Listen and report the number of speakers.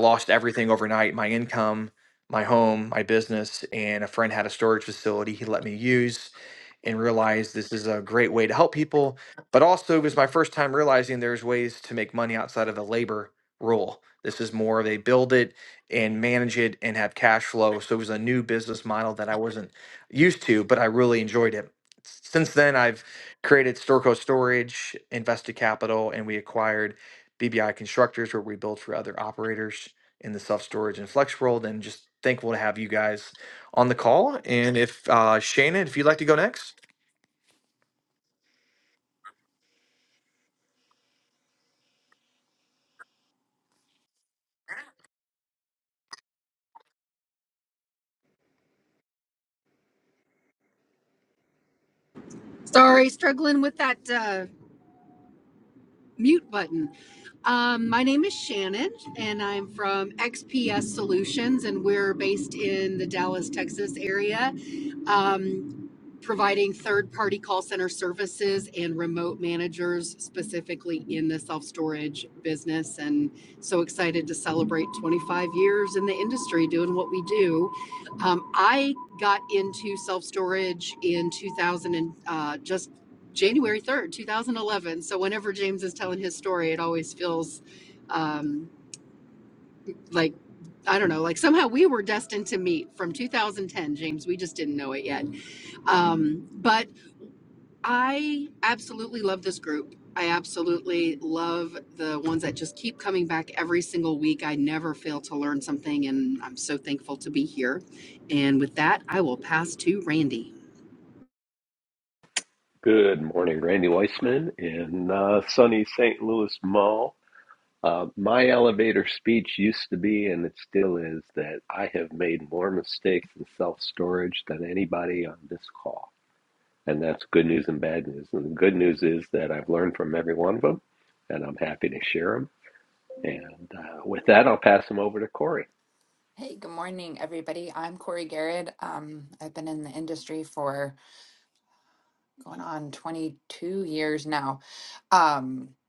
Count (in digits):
4